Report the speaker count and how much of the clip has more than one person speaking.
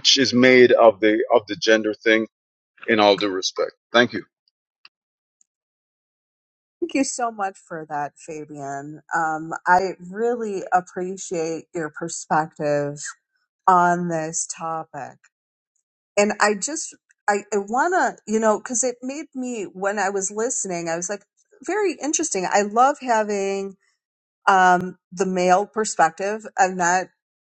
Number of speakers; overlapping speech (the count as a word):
two, no overlap